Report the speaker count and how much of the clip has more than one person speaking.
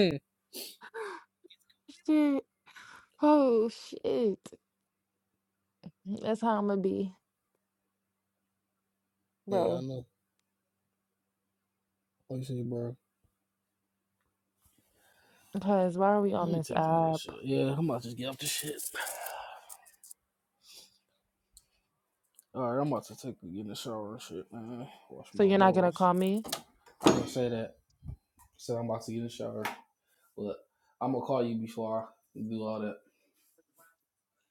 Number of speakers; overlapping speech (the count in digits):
2, about 5%